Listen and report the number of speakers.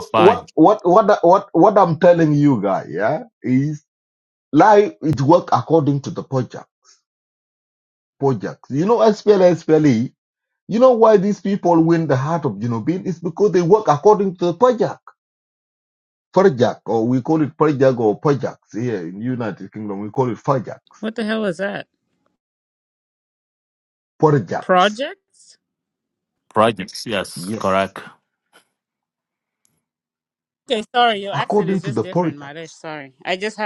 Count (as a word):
three